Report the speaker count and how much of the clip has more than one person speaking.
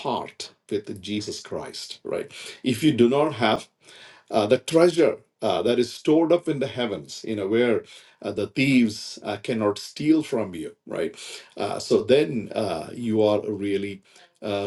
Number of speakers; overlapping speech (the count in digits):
1, no overlap